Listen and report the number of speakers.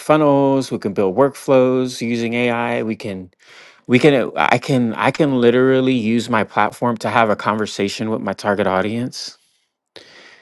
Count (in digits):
1